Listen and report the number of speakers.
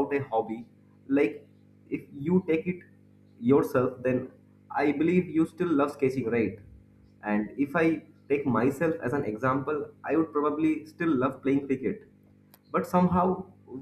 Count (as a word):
one